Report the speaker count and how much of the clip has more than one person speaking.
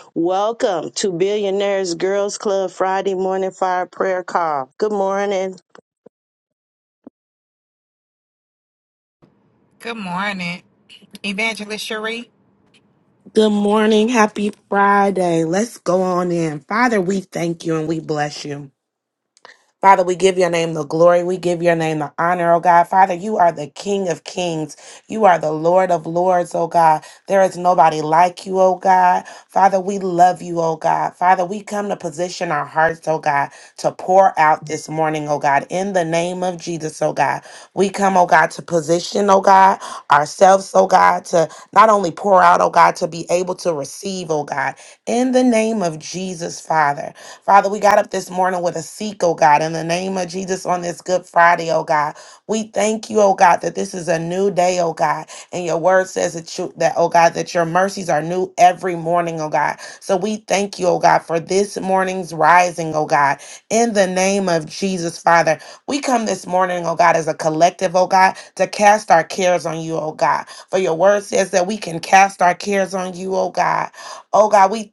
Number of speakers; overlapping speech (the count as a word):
three, no overlap